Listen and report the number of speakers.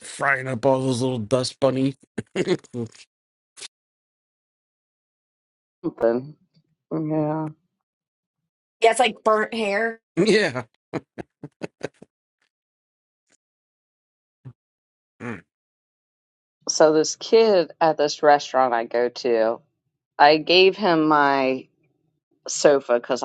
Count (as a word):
three